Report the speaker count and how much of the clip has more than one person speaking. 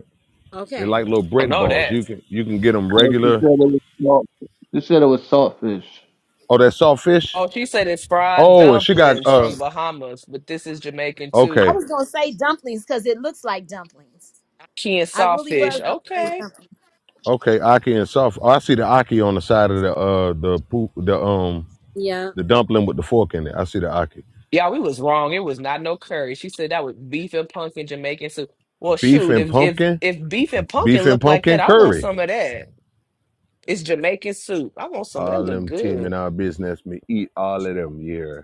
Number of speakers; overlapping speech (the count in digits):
4, about 19%